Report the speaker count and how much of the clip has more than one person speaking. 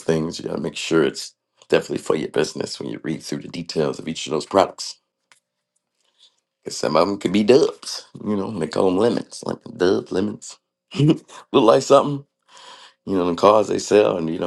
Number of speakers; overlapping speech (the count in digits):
1, no overlap